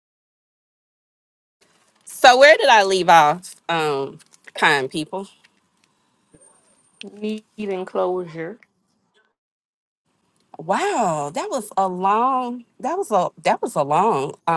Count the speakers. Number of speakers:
2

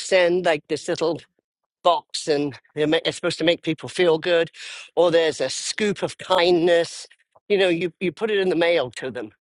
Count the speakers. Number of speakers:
1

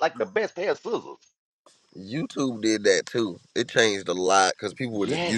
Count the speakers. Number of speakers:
2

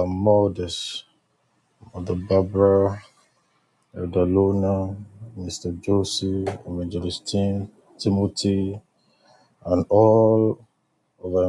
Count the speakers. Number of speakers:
1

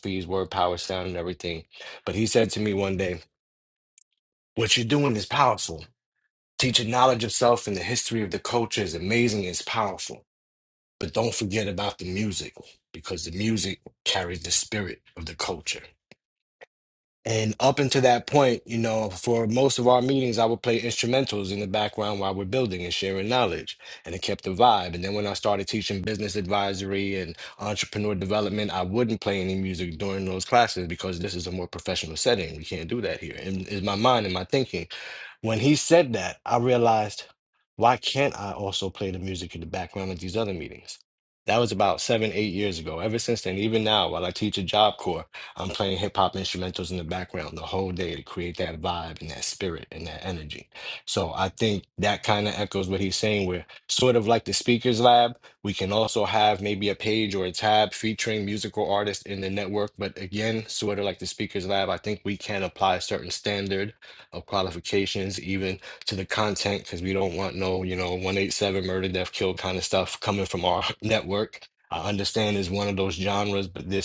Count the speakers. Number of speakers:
1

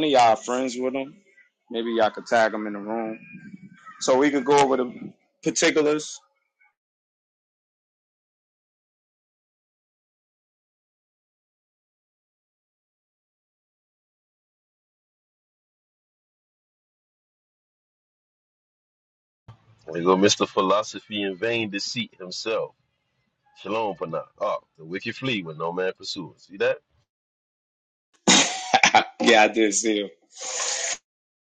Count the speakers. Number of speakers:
2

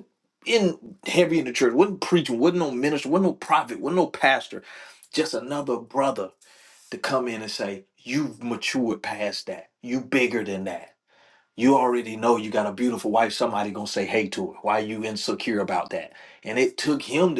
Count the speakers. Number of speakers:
1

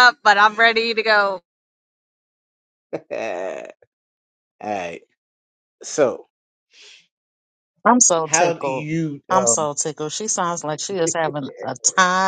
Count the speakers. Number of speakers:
3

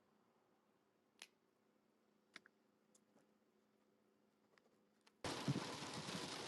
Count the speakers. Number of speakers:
0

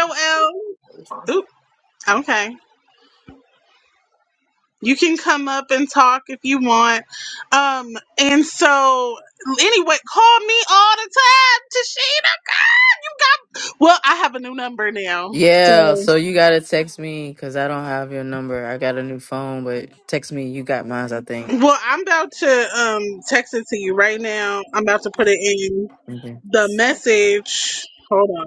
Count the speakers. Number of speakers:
2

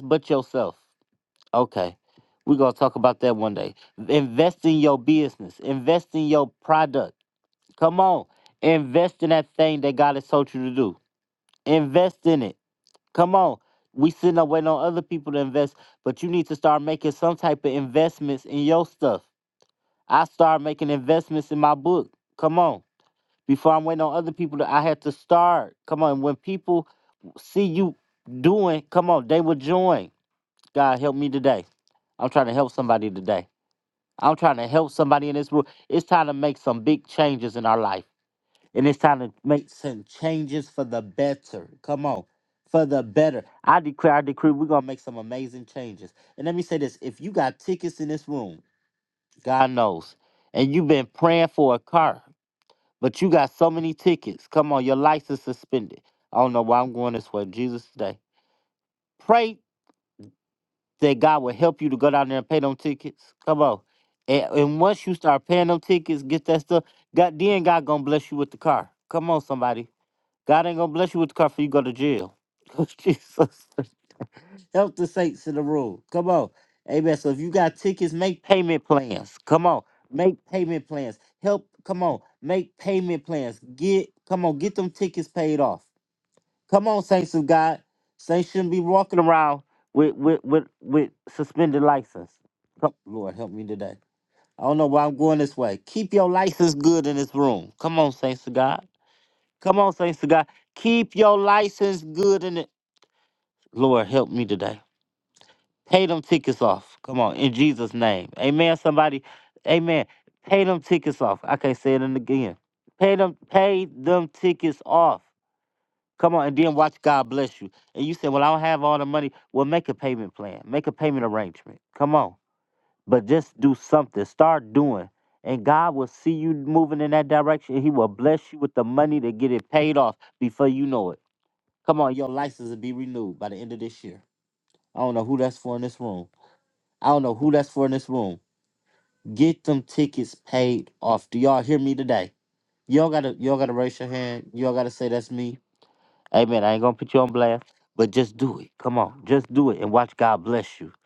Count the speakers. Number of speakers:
1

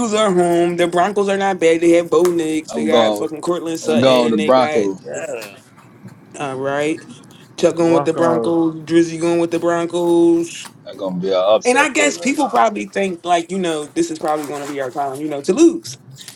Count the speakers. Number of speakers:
3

